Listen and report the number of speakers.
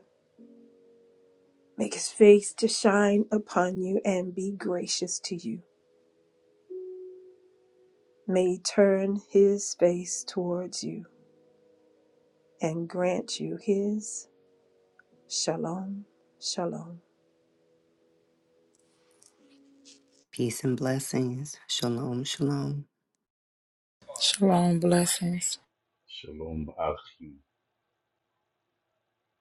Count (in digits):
4